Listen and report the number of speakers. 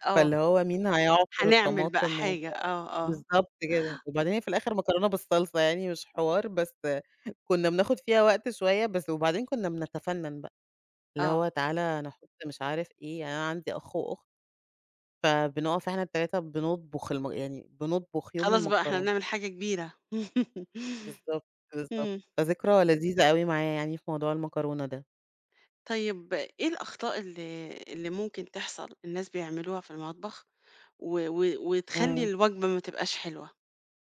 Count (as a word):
two